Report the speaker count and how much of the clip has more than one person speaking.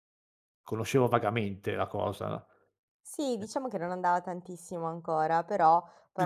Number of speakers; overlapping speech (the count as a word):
two, about 2%